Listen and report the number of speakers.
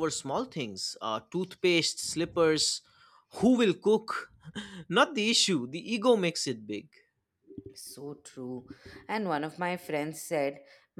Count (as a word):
two